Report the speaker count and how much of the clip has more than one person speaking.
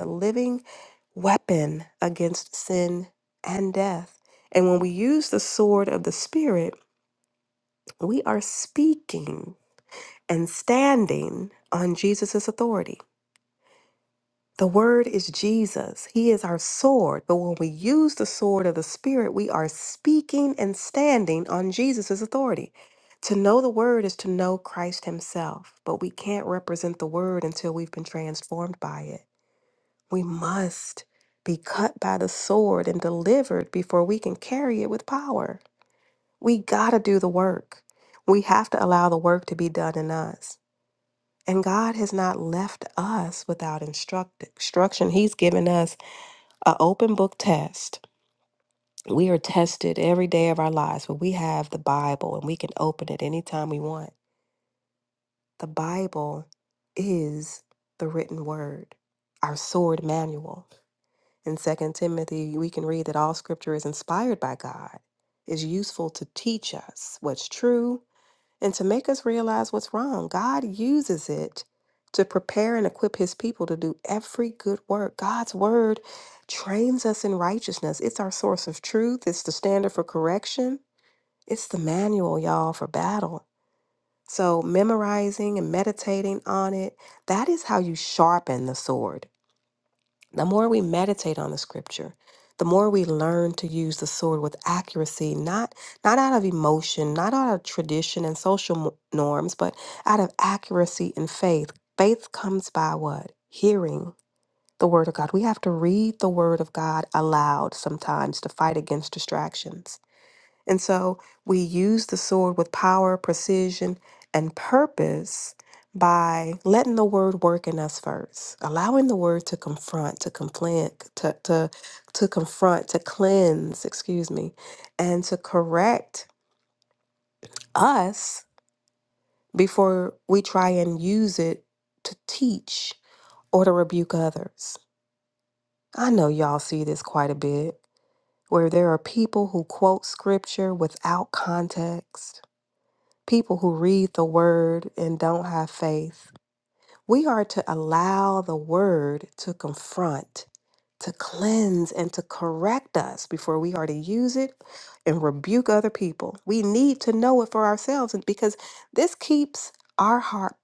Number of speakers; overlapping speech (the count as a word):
one, no overlap